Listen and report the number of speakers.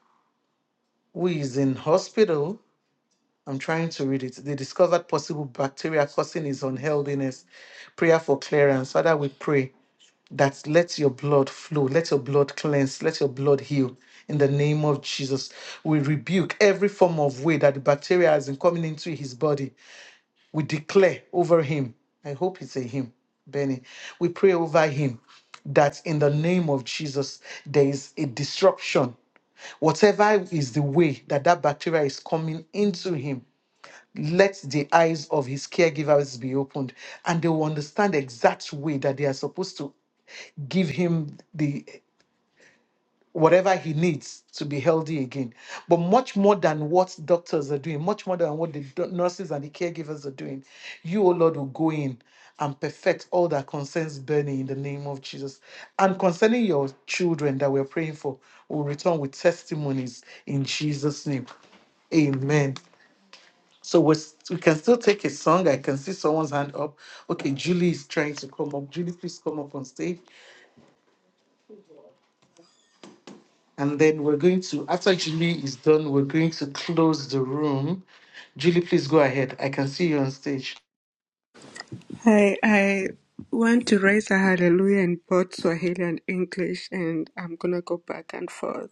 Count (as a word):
two